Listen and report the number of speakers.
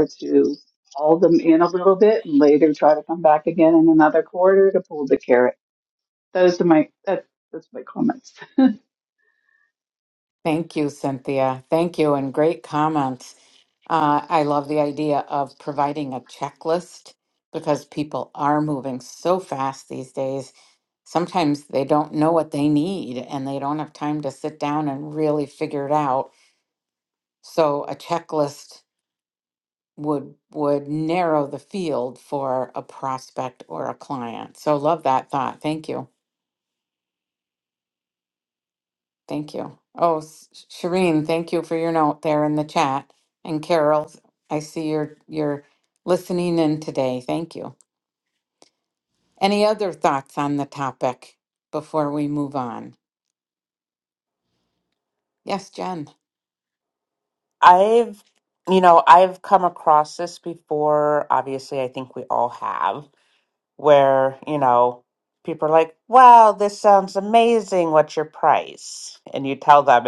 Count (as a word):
three